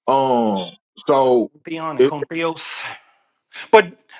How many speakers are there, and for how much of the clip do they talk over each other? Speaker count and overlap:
two, about 3%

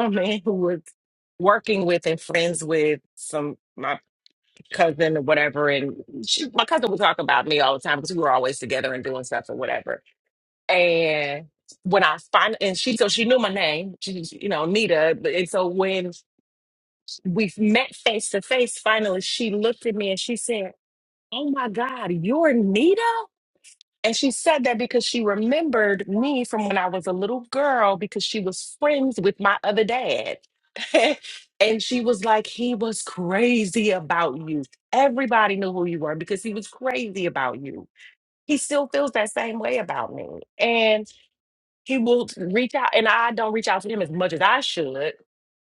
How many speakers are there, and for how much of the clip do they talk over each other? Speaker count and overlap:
one, no overlap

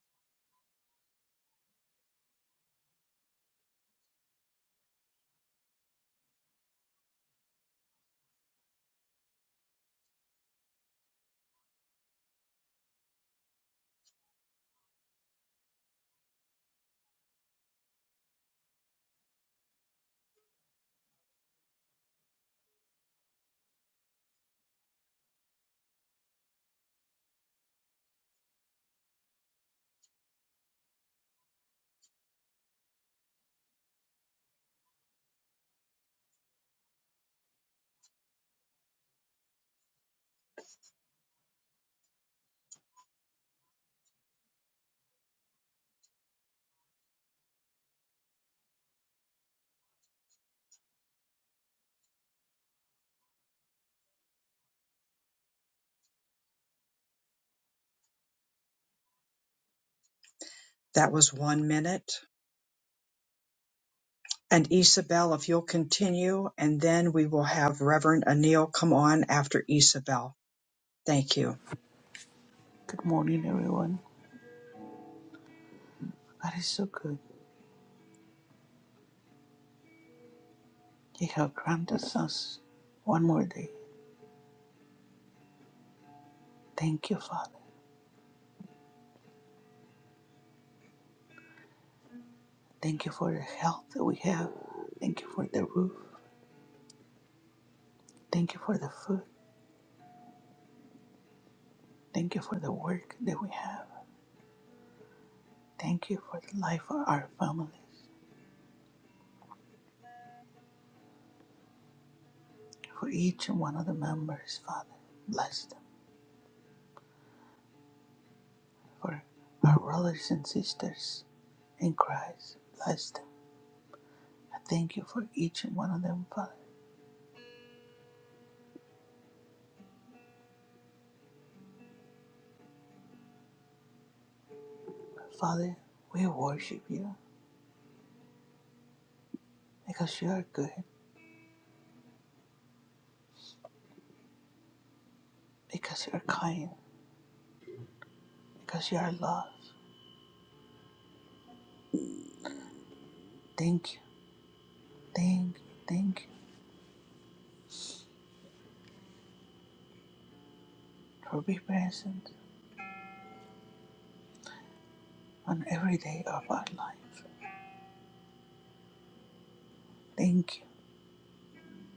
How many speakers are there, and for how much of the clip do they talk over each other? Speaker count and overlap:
two, no overlap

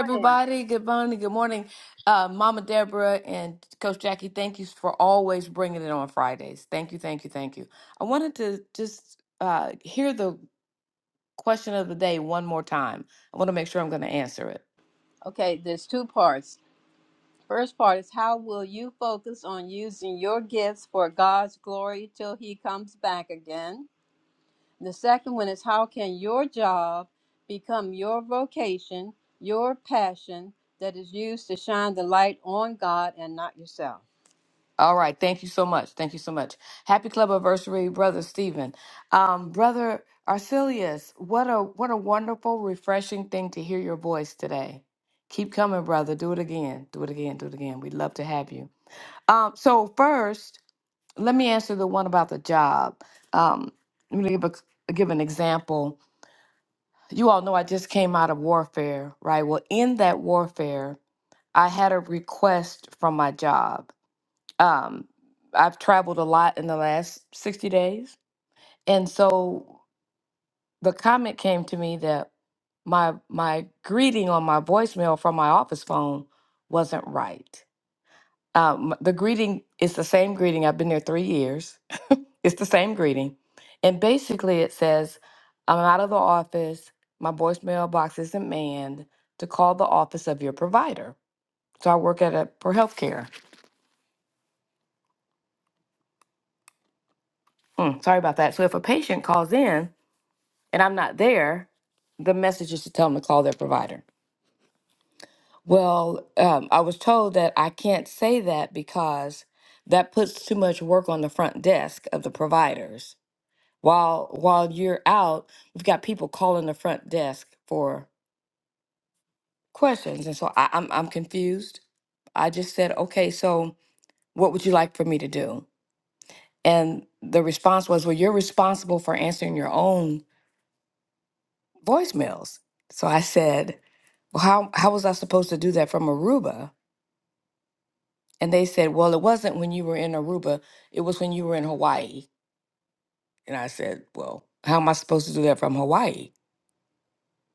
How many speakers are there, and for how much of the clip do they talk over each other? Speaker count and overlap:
two, under 1%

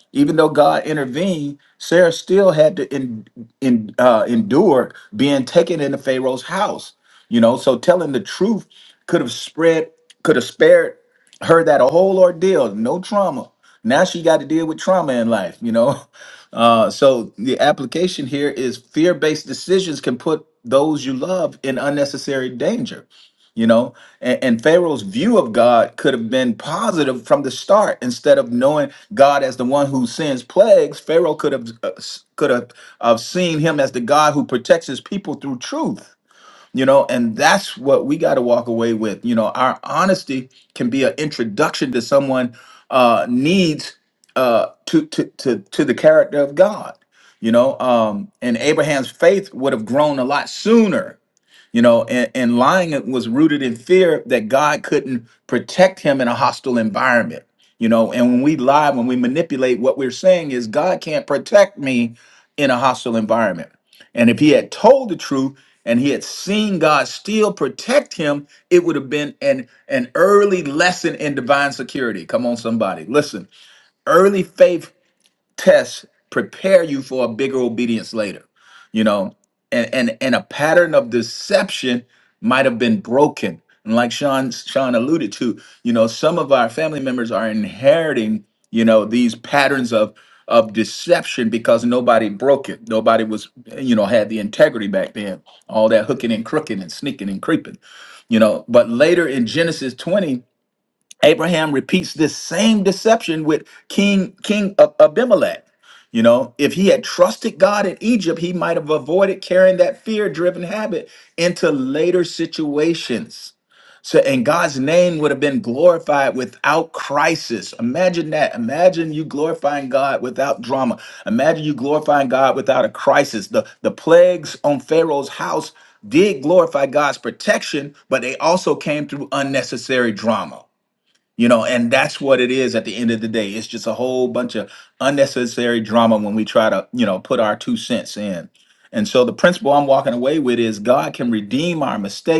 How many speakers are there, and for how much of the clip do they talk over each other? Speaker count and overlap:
one, no overlap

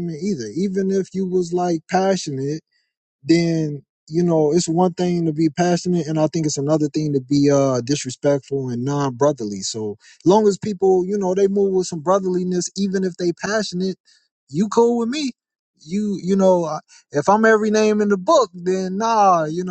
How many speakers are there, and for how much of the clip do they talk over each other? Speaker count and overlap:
one, no overlap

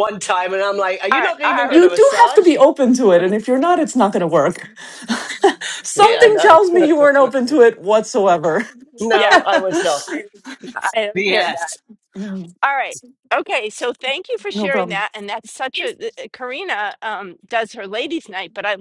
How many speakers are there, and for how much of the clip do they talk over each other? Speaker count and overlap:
three, about 17%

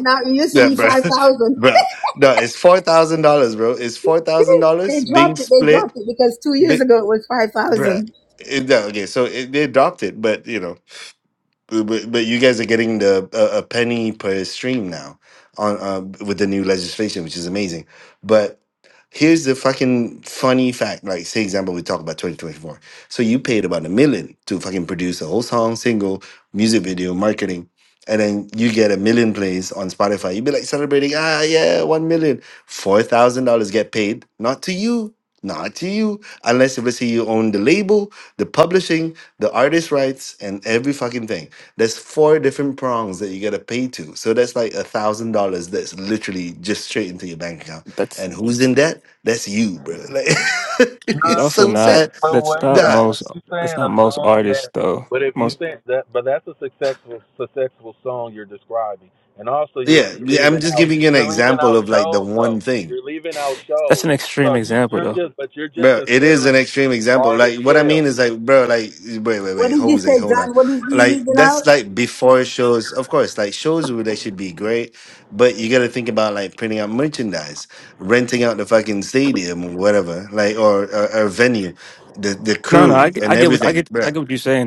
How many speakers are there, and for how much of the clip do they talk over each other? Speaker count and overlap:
four, about 17%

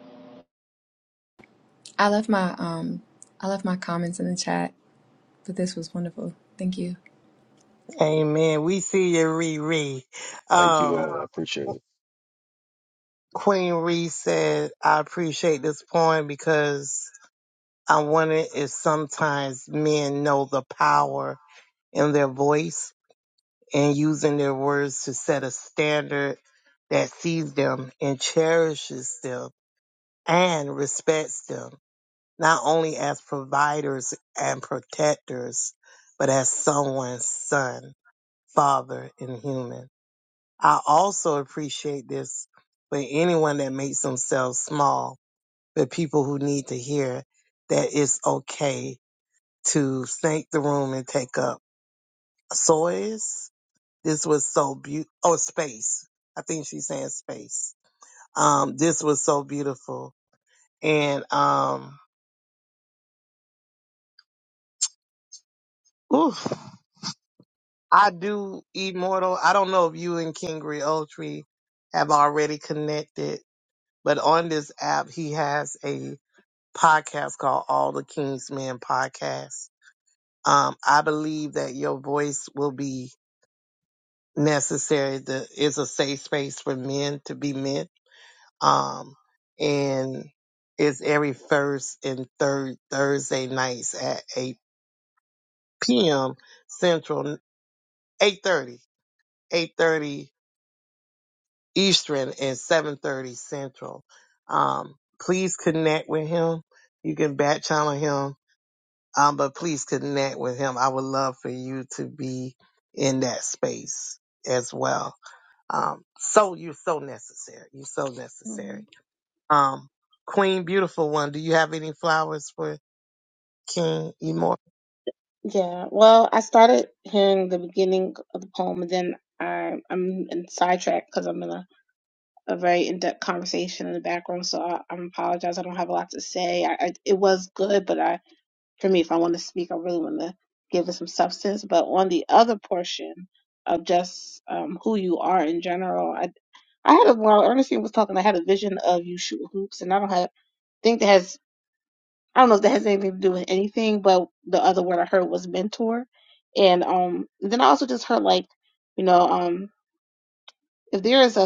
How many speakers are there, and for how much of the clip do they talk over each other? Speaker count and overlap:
four, under 1%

